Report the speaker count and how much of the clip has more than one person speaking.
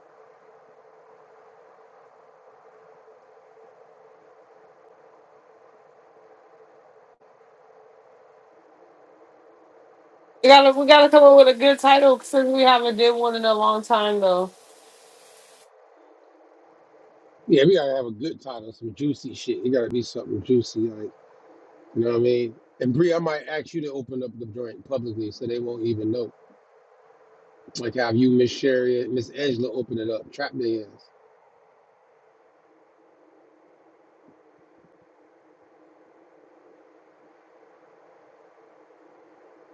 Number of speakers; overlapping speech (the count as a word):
two, no overlap